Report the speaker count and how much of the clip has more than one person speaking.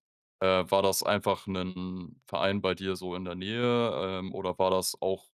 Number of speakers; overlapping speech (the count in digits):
1, no overlap